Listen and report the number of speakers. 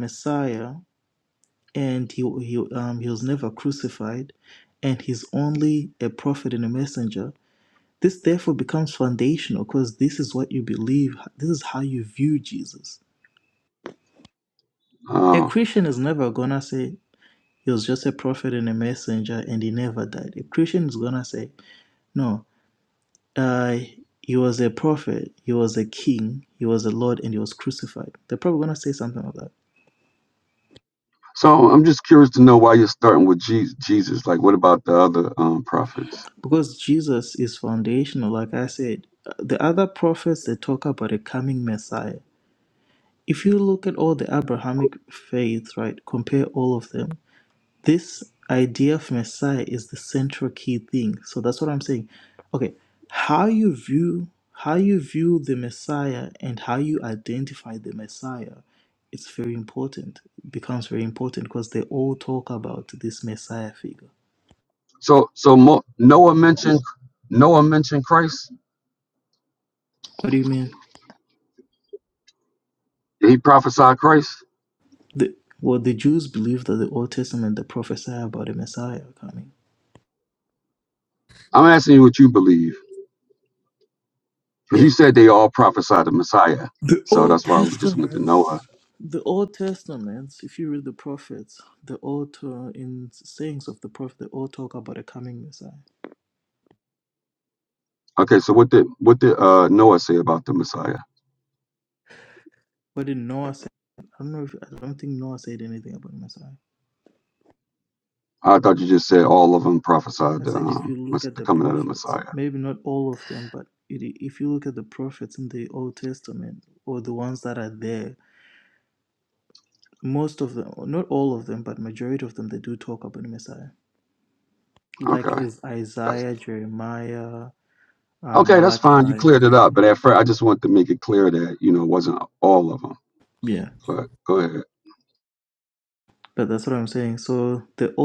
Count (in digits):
2